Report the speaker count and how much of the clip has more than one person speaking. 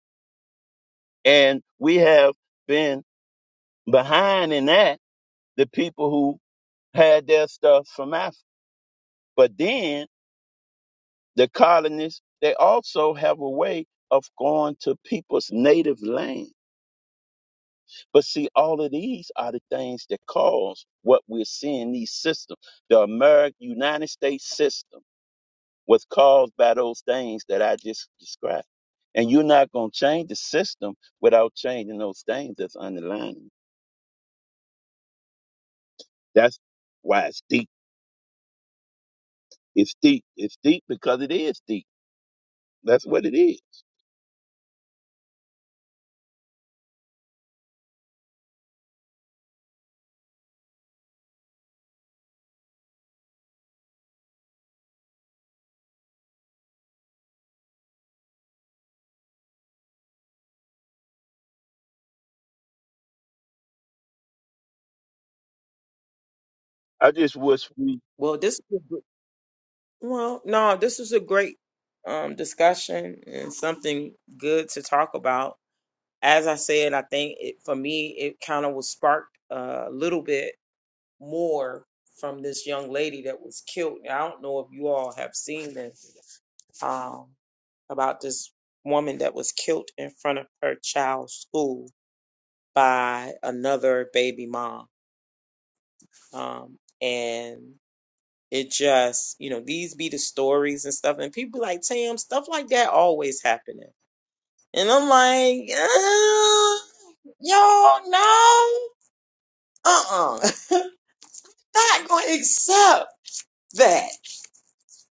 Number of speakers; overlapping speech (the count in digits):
2, no overlap